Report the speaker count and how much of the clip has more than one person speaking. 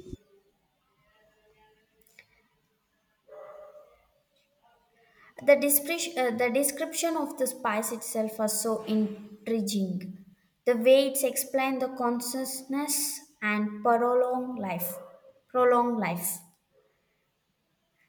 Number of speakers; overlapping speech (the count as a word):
one, no overlap